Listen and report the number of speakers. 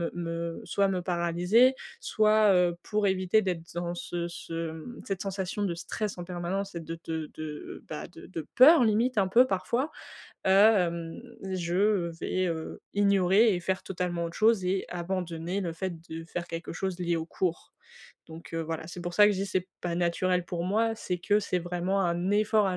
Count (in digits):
1